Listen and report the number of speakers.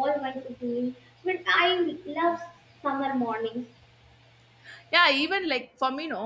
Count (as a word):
two